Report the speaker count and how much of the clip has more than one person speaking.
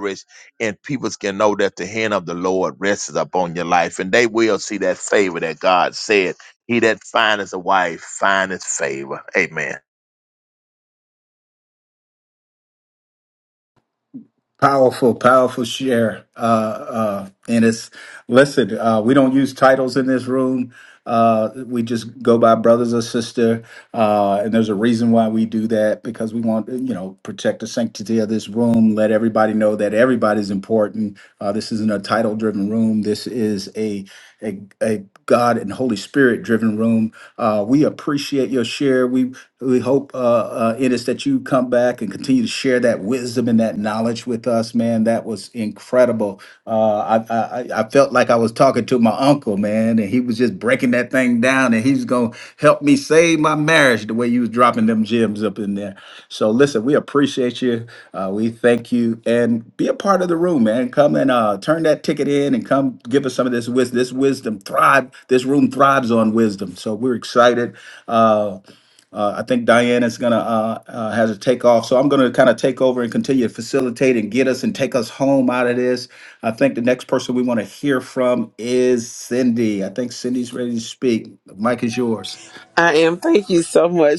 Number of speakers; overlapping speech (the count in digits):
3, no overlap